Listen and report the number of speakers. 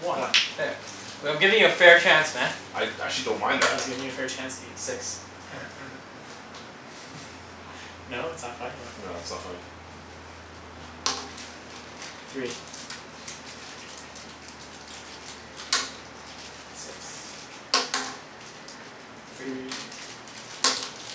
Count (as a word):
three